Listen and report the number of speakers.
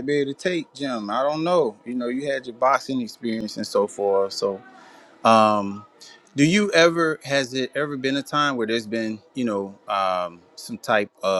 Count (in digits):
1